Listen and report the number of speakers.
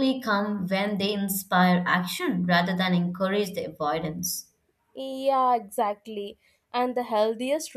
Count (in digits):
2